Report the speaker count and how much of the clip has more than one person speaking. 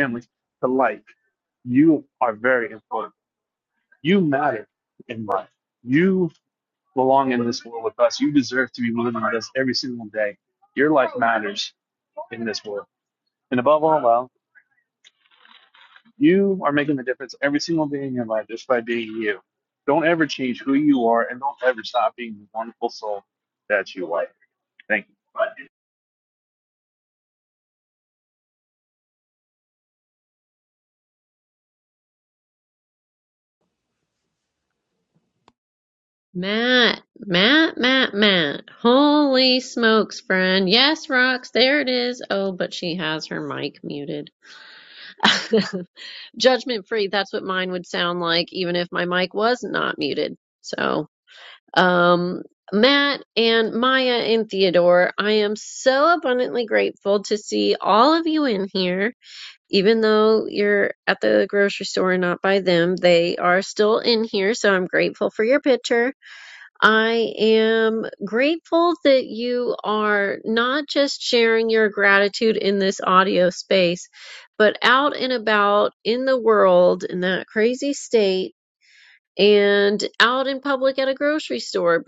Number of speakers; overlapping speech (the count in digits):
2, no overlap